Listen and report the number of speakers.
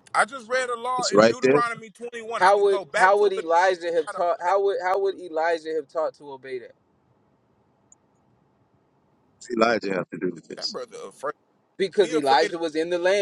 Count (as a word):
three